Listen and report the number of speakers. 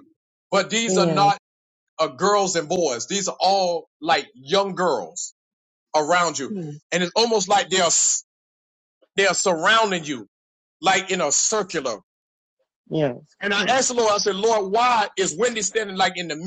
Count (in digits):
2